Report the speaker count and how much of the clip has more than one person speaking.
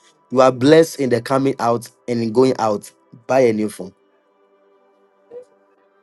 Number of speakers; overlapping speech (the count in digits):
1, no overlap